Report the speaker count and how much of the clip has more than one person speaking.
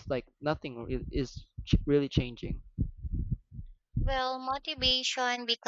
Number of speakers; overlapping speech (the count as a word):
two, no overlap